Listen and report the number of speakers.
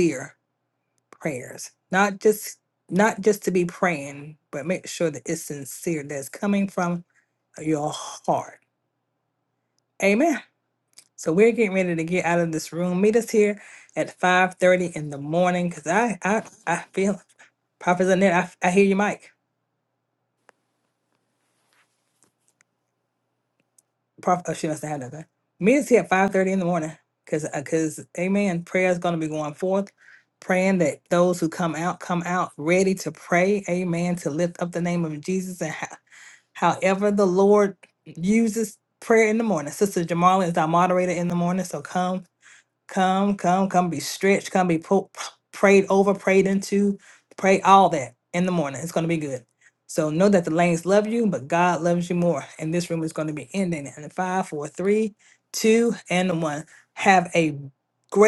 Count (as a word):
one